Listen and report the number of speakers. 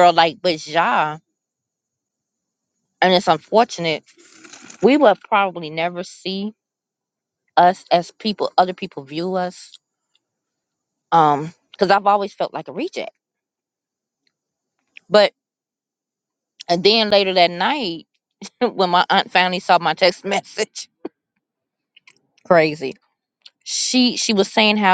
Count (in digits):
1